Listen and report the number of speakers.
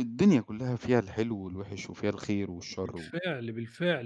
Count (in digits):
2